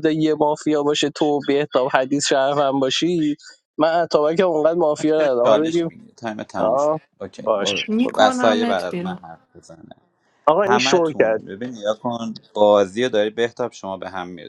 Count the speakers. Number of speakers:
3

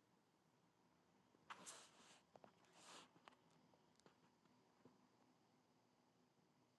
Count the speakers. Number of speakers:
0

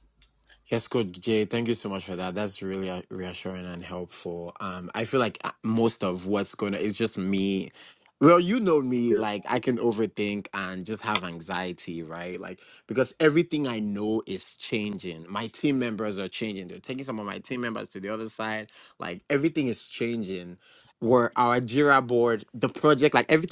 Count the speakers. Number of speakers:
1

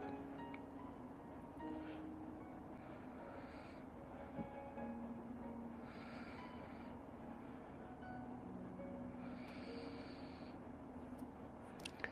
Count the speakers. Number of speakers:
0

